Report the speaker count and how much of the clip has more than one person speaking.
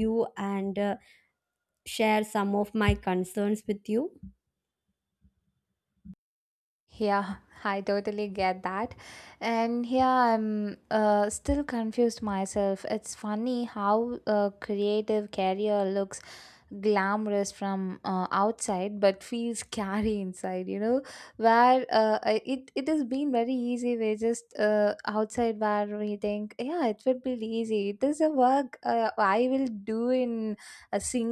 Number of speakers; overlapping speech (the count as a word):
two, no overlap